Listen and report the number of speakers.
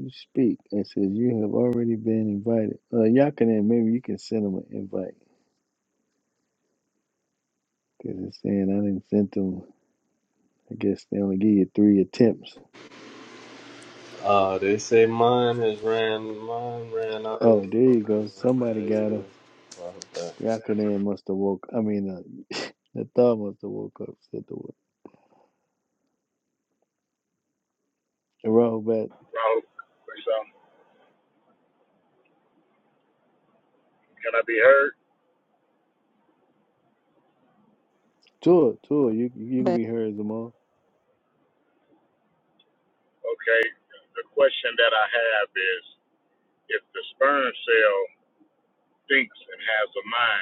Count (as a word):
three